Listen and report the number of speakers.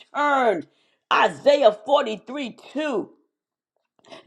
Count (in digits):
1